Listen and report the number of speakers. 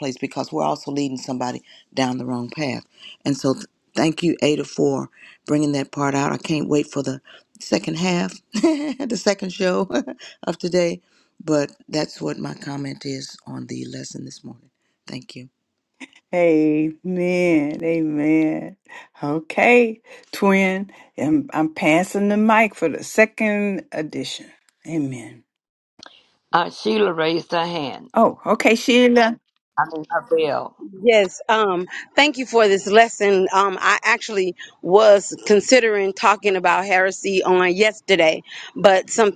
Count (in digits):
4